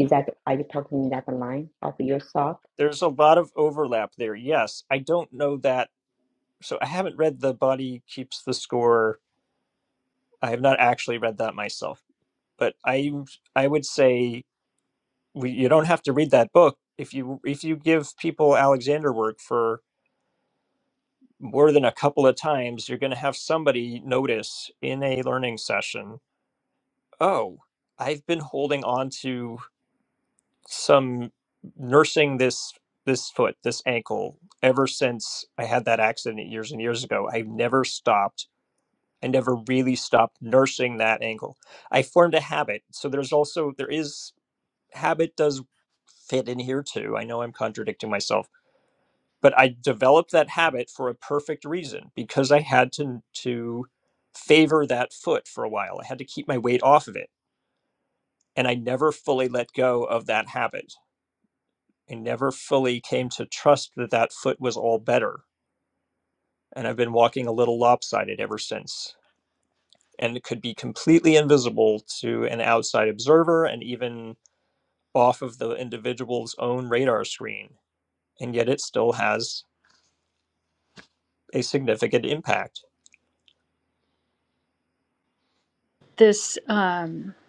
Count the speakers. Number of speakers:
three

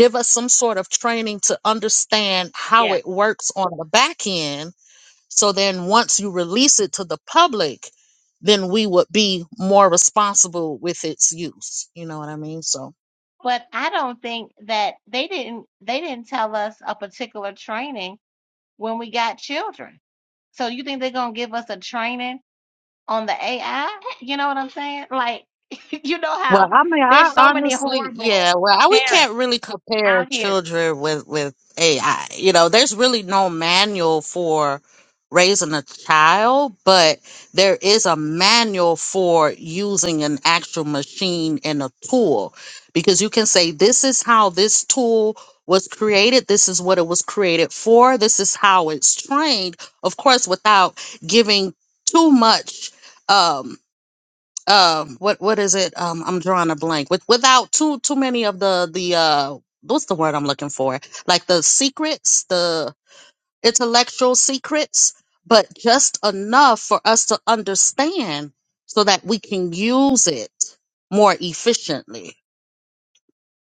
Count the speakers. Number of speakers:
two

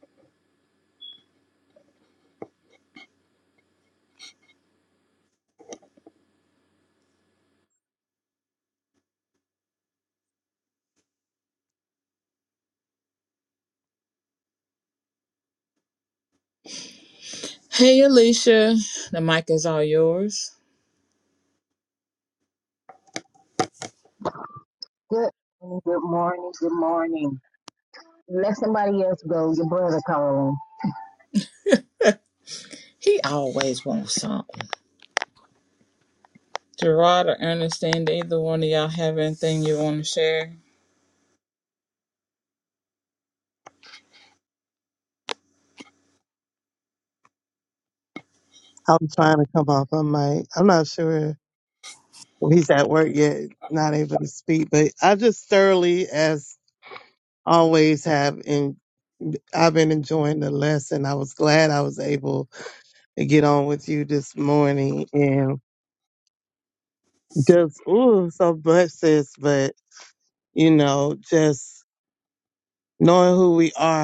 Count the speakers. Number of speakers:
three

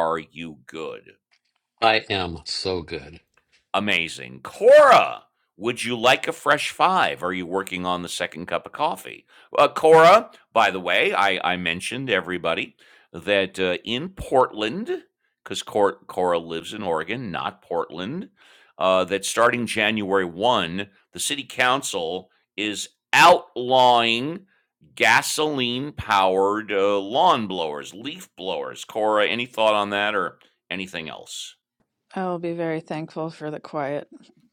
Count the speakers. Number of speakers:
three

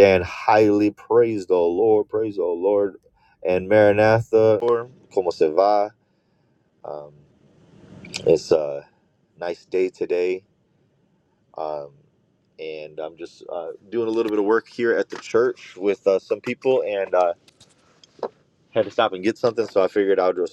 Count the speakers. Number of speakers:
one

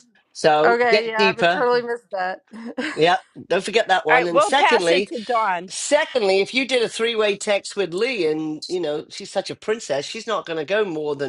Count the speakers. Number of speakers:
three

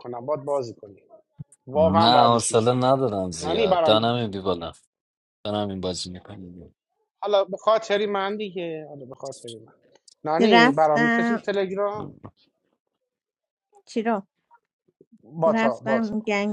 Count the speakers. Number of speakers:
three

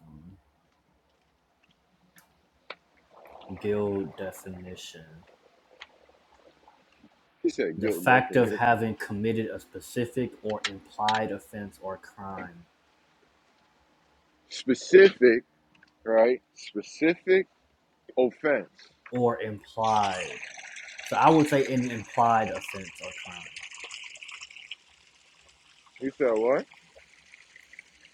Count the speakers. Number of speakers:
two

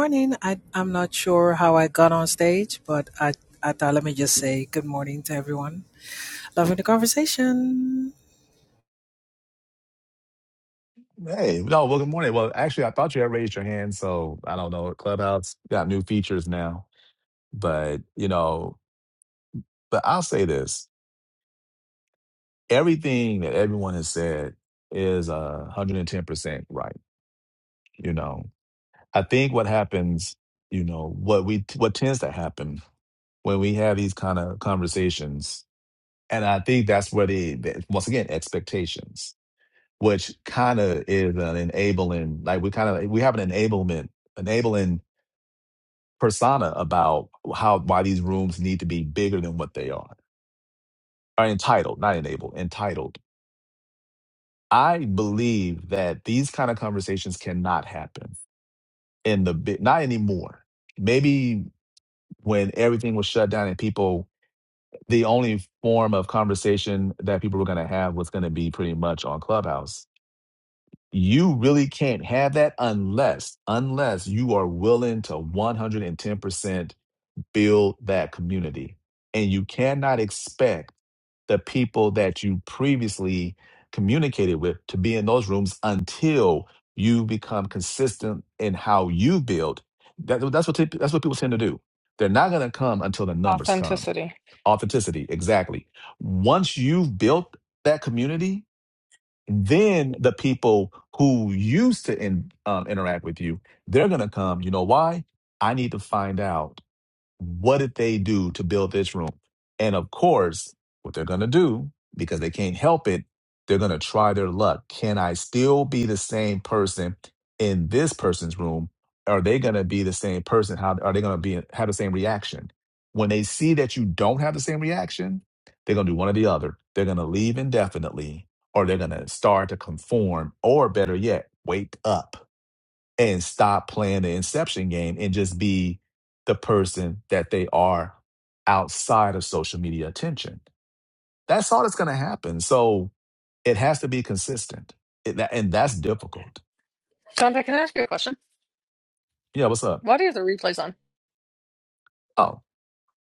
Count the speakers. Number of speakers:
three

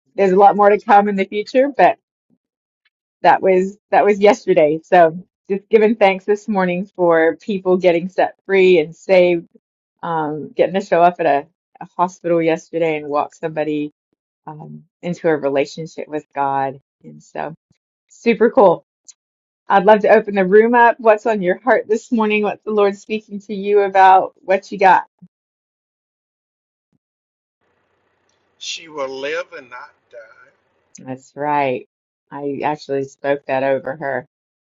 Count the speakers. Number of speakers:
two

